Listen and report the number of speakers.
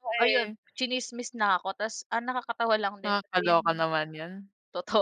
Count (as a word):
two